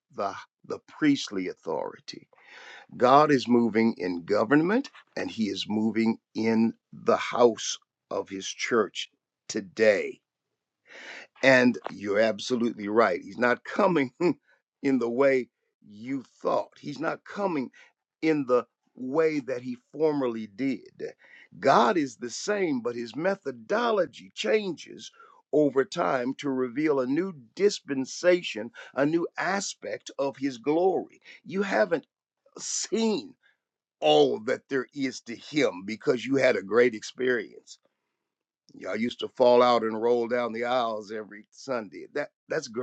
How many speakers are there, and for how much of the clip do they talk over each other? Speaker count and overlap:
1, no overlap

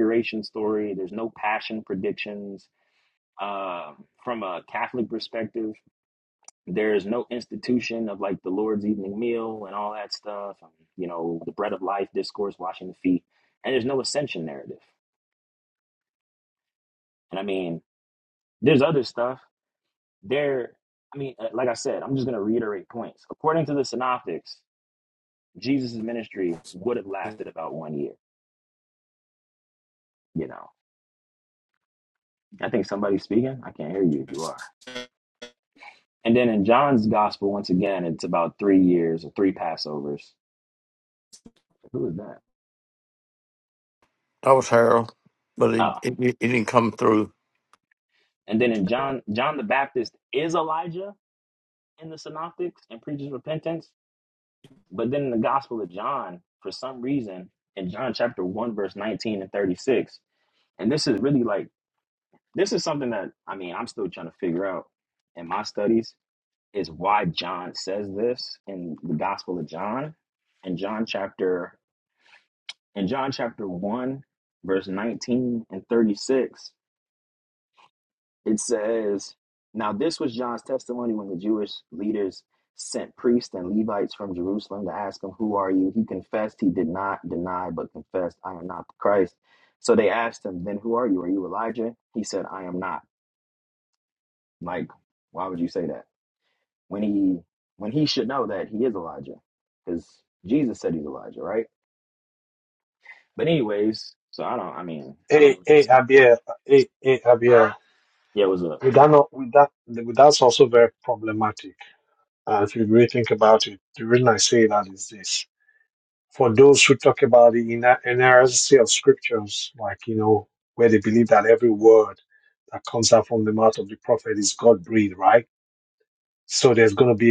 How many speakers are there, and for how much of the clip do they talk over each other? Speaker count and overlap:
3, about 1%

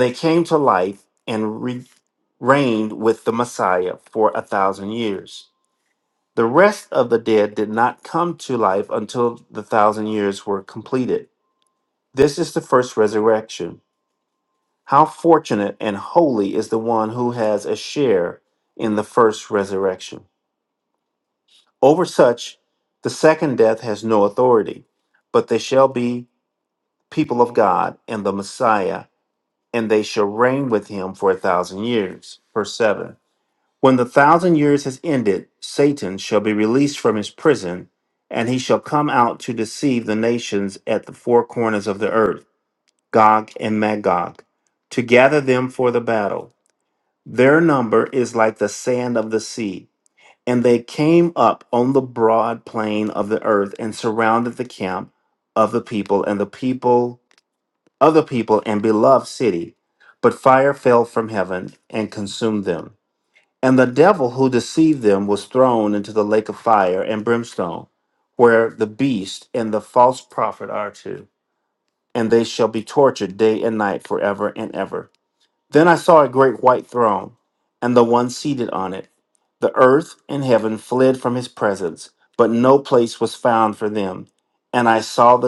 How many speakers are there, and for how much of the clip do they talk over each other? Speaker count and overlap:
1, no overlap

